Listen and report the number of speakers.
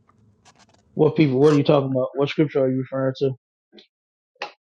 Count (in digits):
1